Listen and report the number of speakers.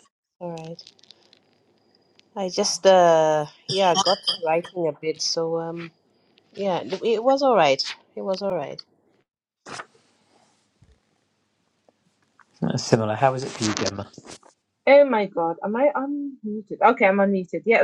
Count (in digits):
3